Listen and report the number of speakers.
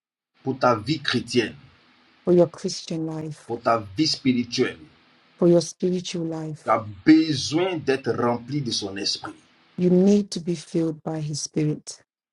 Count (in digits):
2